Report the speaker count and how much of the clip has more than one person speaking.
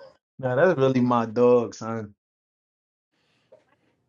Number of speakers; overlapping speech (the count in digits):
1, no overlap